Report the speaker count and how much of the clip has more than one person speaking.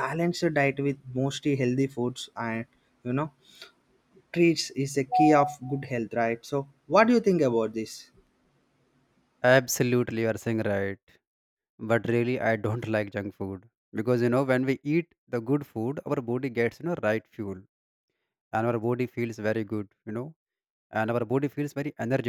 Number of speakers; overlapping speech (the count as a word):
two, no overlap